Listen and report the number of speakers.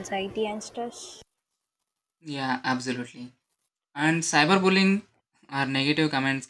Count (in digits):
2